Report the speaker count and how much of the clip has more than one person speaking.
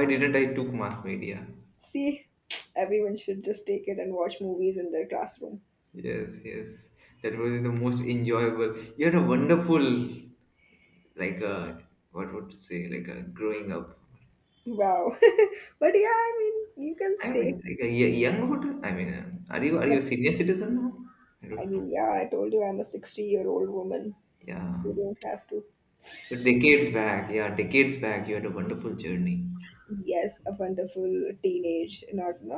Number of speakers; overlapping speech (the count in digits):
2, about 2%